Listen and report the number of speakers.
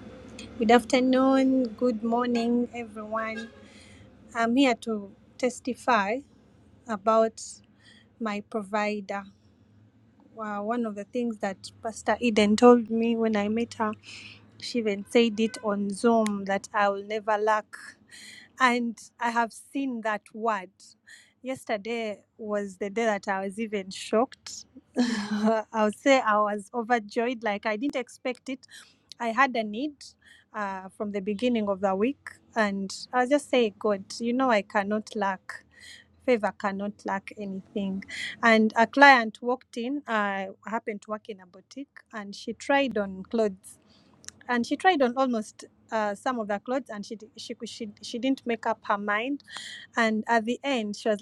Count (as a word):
one